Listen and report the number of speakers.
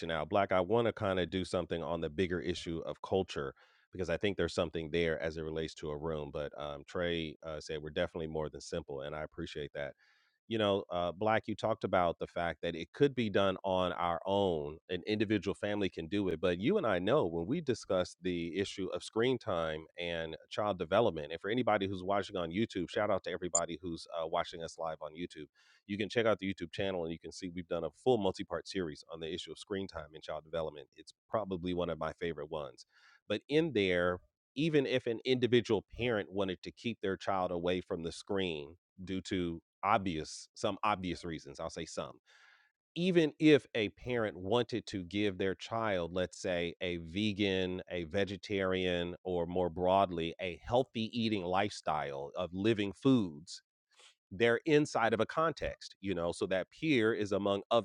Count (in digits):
1